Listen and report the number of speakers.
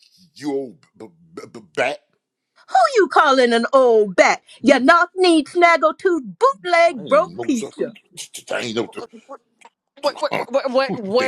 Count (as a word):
three